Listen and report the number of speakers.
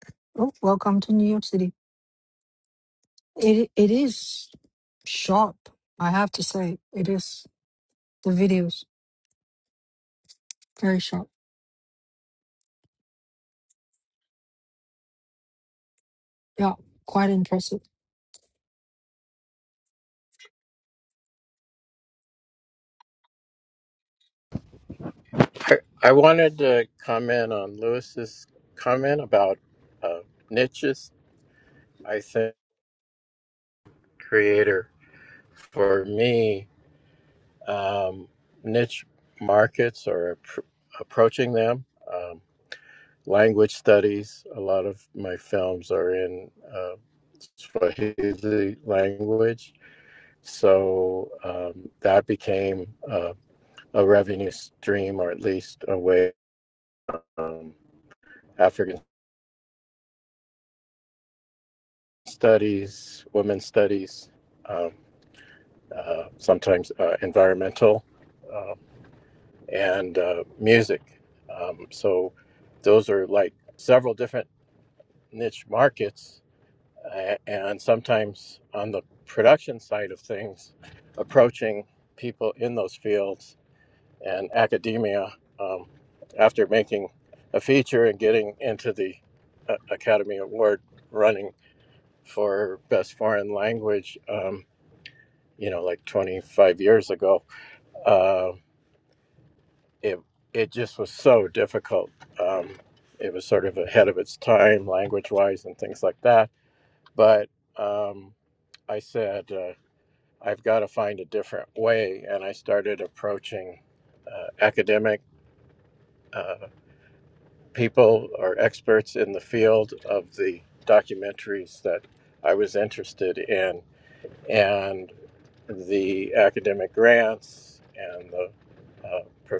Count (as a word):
two